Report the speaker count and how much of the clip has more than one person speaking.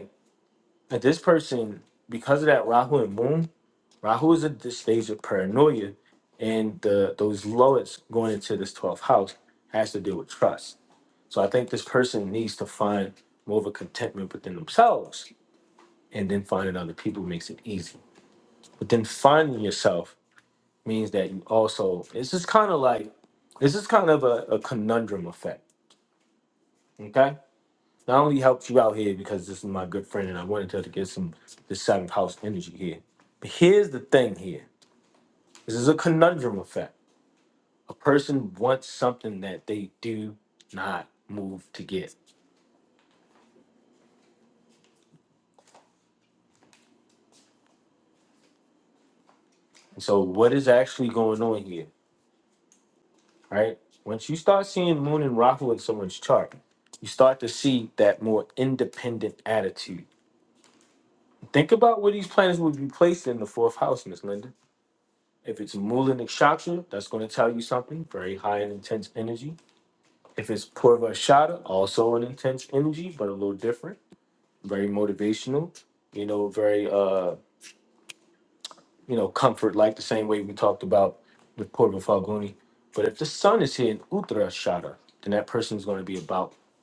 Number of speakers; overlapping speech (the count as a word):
one, no overlap